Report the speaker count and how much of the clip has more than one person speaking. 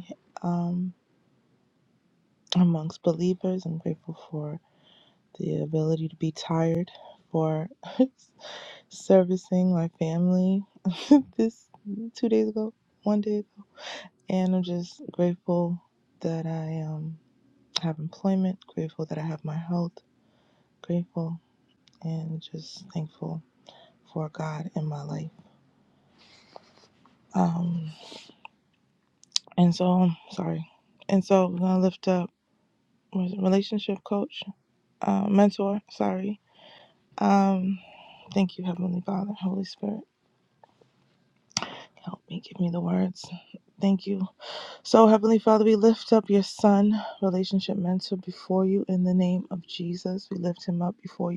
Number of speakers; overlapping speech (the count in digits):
1, no overlap